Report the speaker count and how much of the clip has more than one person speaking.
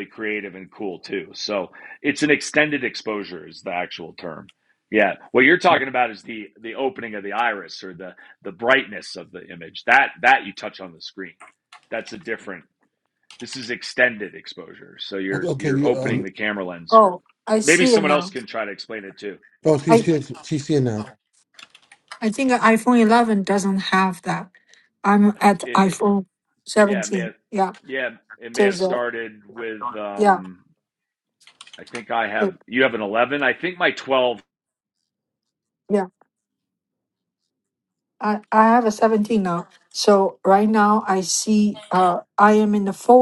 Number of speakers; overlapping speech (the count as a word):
three, about 8%